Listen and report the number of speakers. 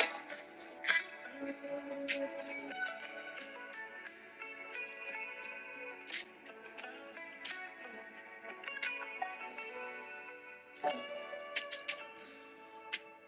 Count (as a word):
zero